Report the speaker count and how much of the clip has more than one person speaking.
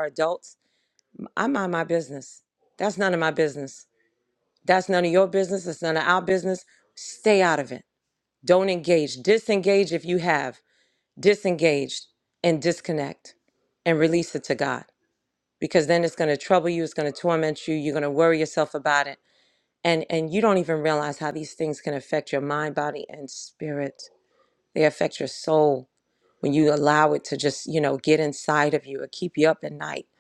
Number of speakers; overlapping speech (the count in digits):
1, no overlap